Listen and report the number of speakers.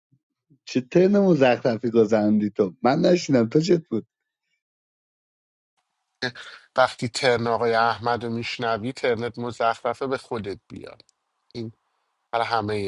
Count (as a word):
two